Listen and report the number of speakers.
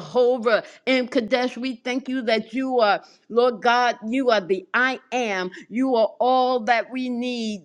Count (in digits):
1